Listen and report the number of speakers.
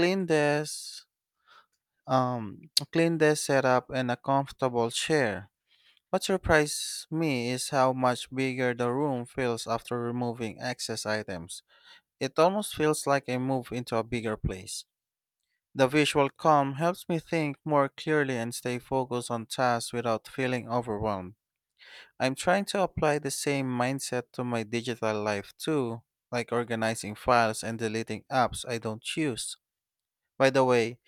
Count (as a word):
one